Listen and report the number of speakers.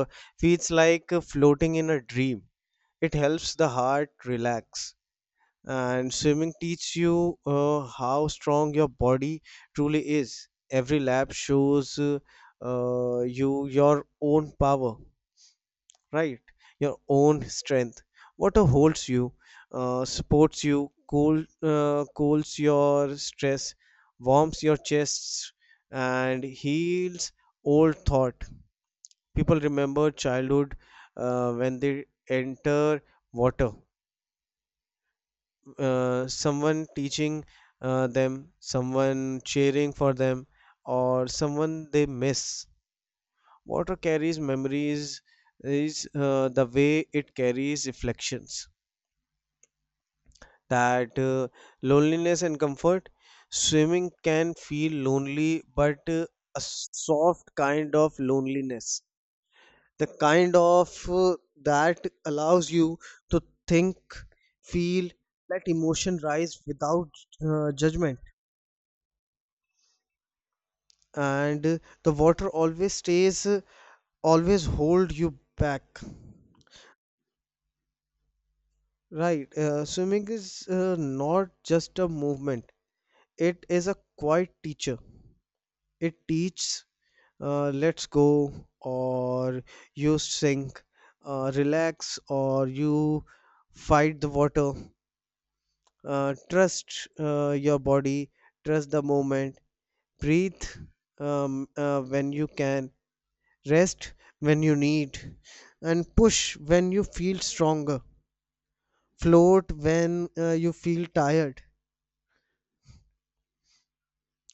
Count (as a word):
one